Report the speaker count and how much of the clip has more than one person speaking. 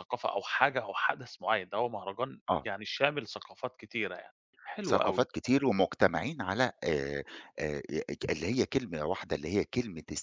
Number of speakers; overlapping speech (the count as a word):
two, about 6%